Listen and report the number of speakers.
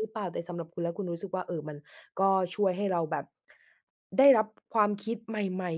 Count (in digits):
1